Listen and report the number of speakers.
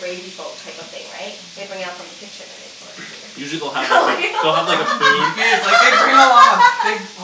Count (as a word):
three